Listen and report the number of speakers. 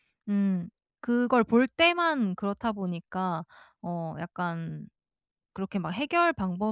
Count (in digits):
1